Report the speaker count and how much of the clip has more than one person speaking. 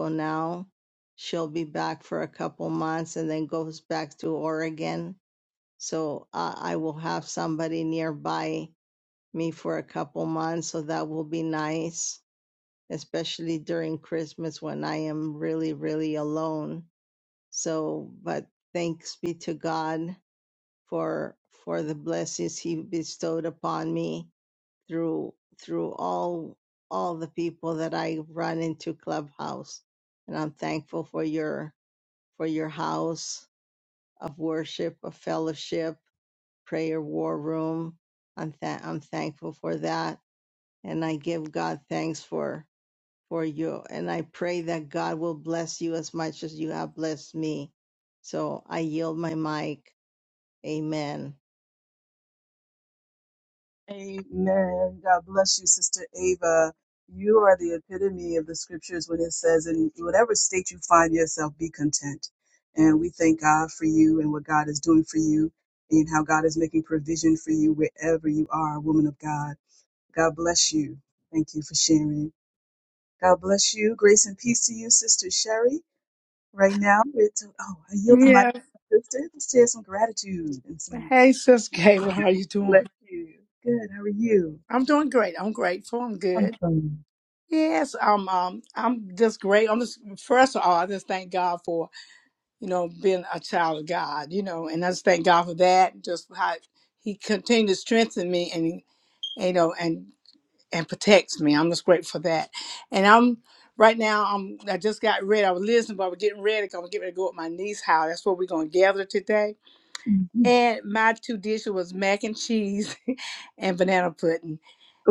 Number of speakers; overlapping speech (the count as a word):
three, about 1%